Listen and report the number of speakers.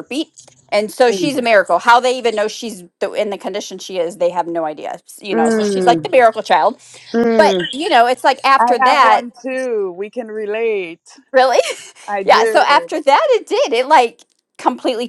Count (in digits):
2